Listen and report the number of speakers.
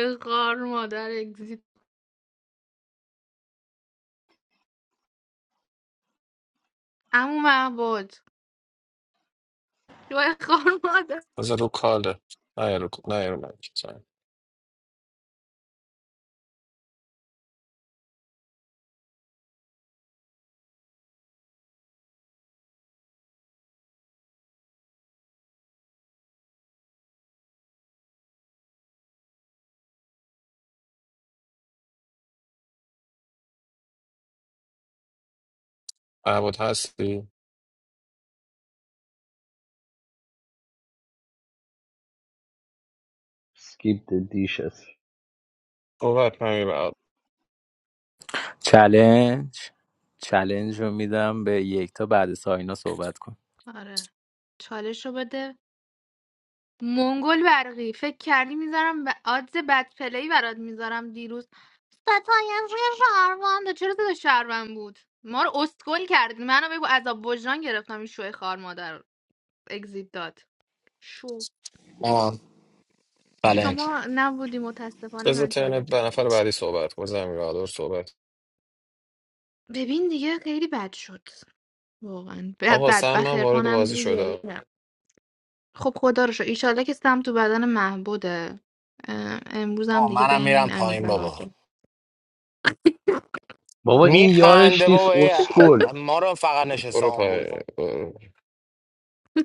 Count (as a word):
five